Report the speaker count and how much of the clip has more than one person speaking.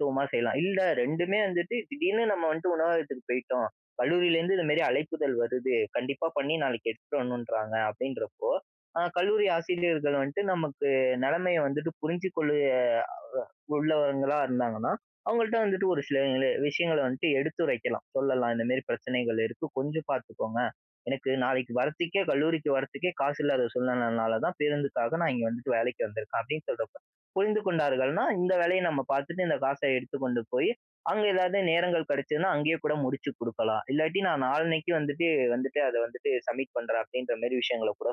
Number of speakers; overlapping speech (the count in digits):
1, no overlap